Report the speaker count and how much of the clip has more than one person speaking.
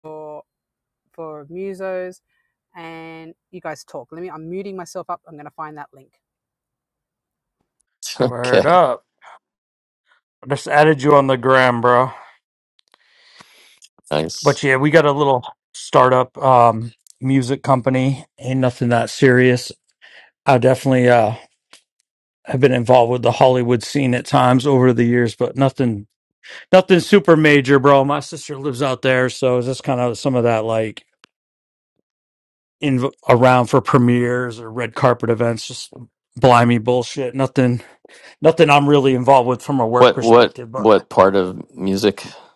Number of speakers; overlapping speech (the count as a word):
three, about 3%